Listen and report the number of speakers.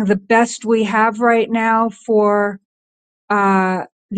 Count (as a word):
one